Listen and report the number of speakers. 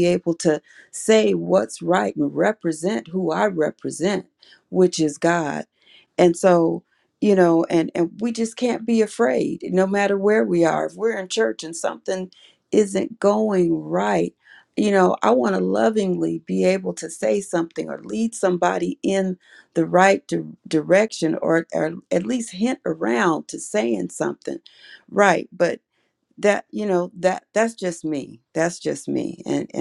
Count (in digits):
1